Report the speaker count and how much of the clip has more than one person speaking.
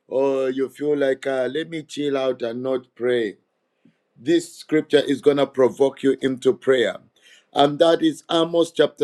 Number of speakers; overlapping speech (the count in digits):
1, no overlap